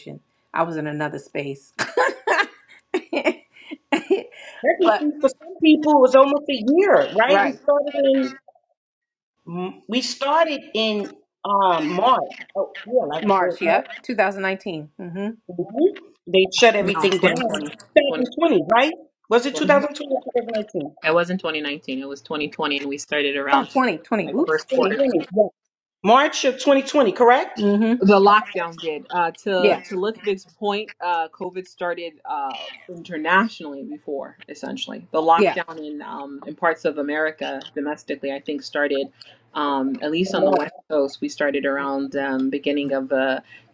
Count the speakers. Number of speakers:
three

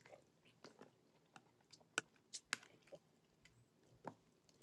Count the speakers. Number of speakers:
zero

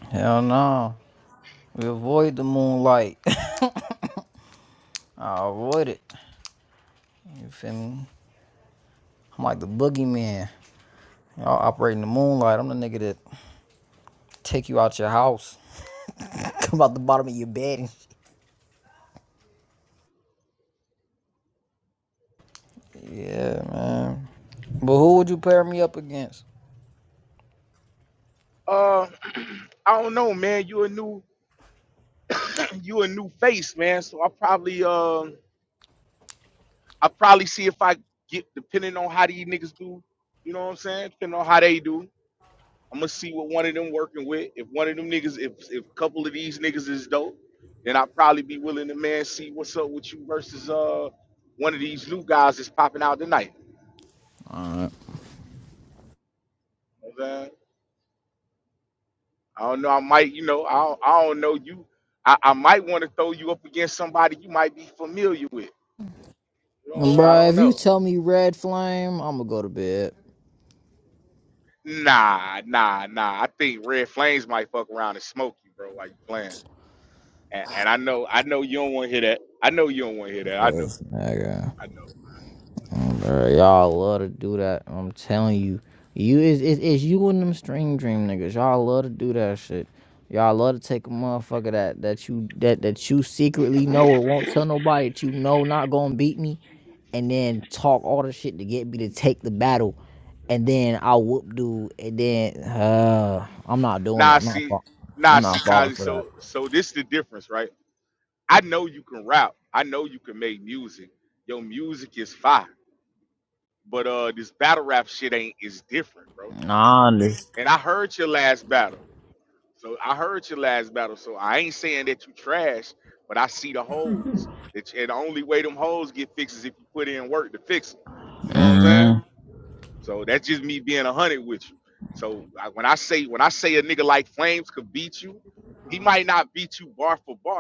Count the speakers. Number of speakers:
two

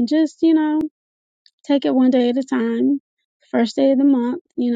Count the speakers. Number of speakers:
one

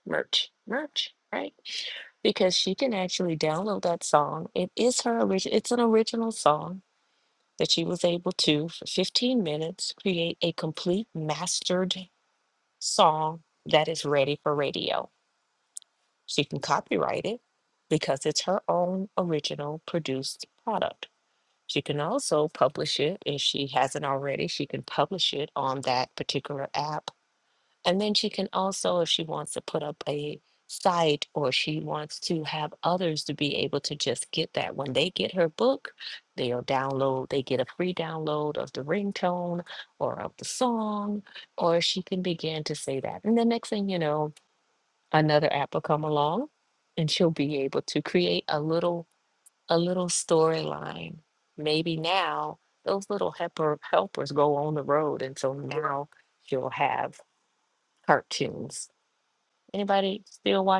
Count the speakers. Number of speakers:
one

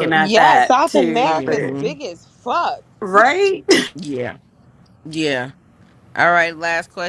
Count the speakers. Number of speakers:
three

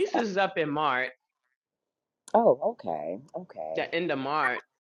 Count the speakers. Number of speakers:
two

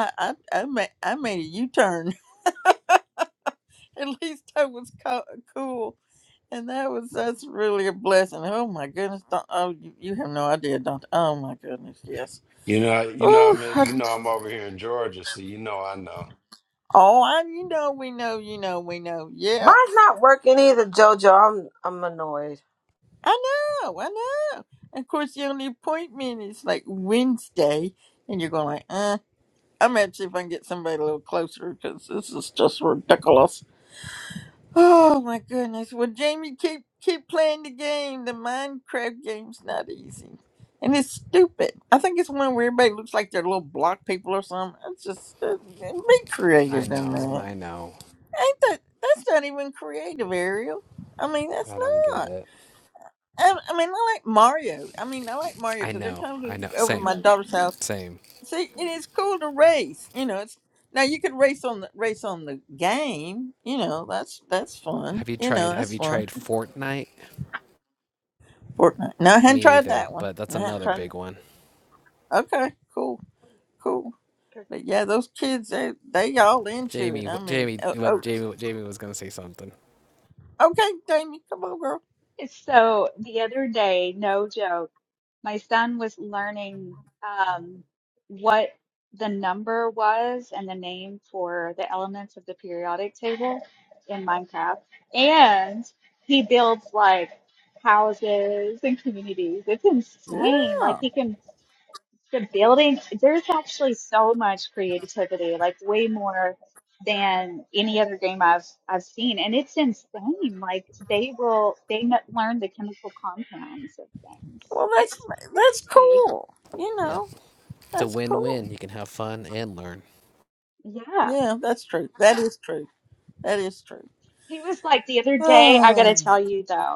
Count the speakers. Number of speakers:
five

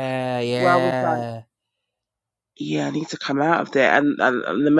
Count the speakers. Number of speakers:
two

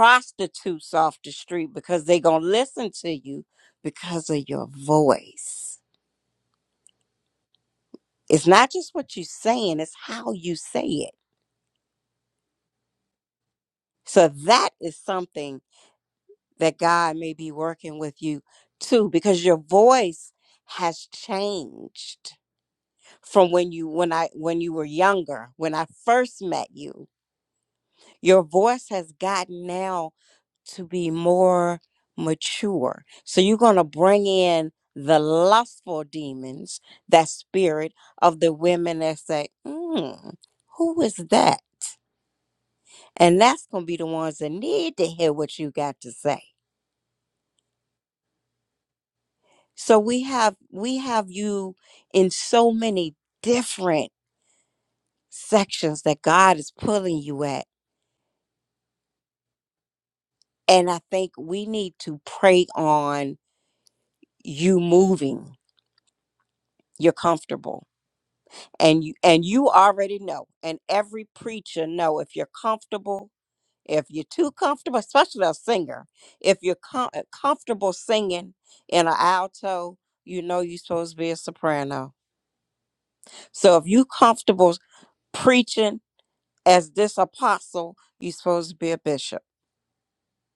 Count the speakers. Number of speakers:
one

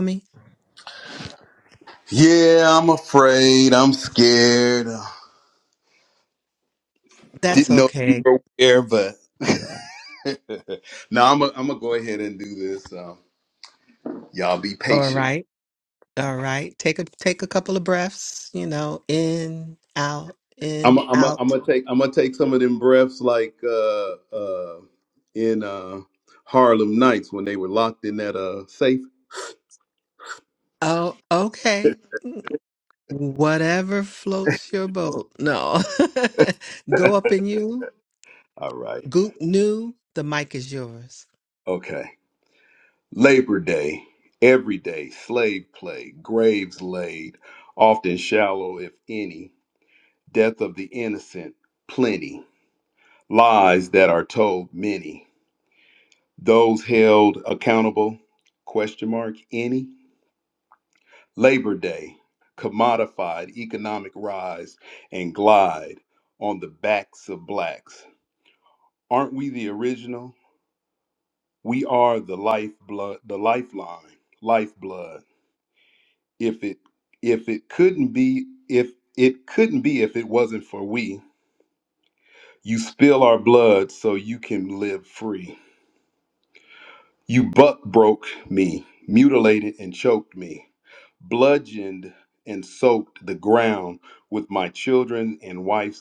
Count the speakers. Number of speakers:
two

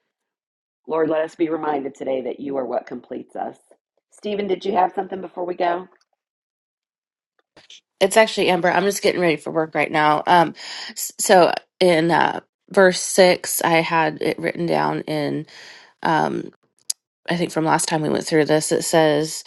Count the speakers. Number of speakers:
two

